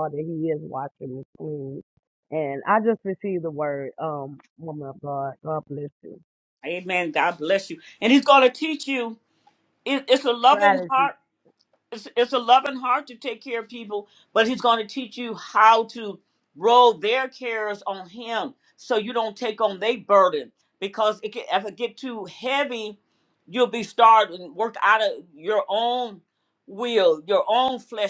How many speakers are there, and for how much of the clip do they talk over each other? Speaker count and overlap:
2, about 2%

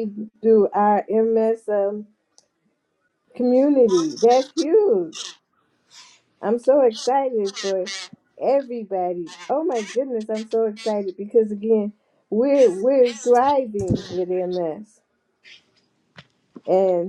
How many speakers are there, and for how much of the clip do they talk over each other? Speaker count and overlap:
1, no overlap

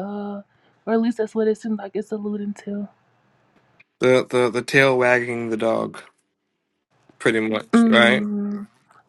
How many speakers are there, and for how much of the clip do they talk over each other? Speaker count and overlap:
2, about 6%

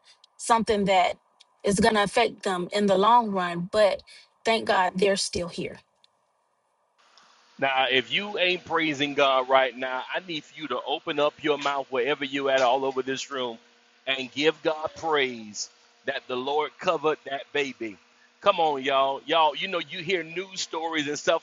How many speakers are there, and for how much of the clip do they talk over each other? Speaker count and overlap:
2, no overlap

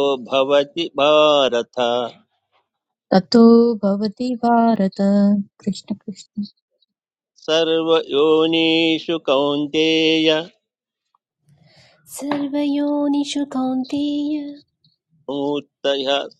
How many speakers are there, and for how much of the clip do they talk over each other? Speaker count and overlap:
3, no overlap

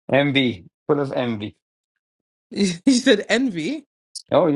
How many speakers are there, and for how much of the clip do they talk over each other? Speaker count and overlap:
2, no overlap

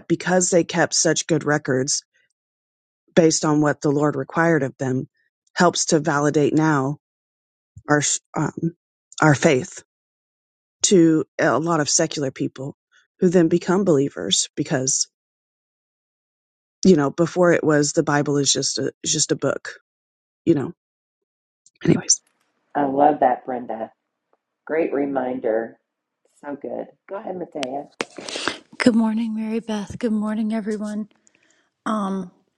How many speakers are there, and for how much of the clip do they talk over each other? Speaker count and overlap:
3, no overlap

